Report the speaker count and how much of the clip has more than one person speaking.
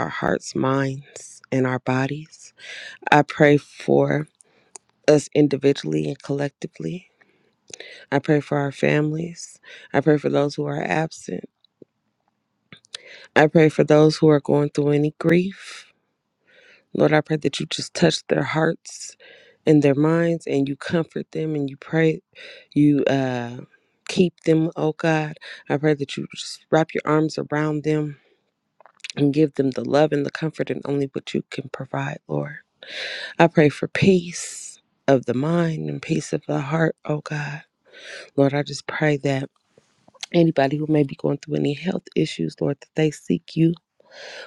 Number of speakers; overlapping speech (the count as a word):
one, no overlap